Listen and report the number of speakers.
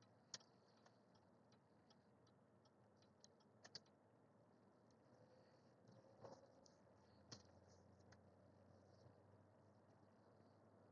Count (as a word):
zero